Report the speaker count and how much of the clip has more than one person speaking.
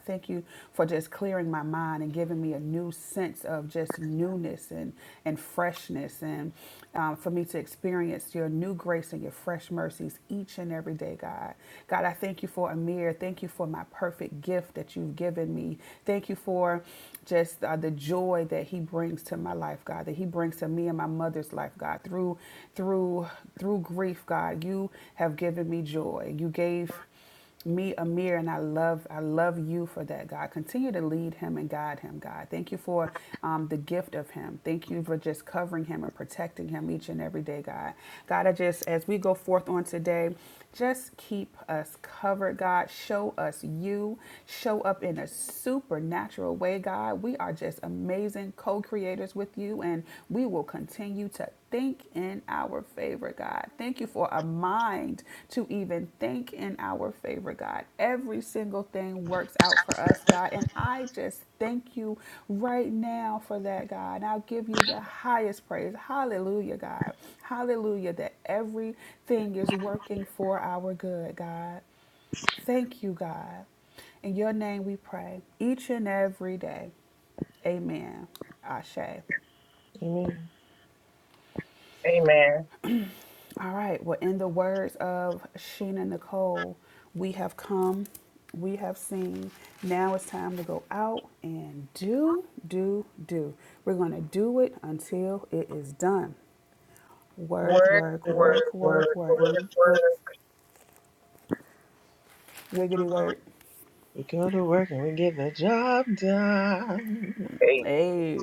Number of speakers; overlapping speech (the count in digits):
3, about 2%